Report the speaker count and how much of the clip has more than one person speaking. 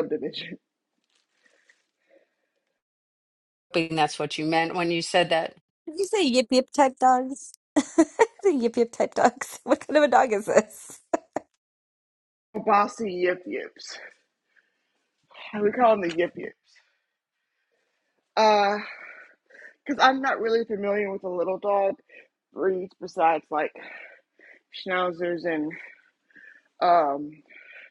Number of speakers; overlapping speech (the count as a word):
three, no overlap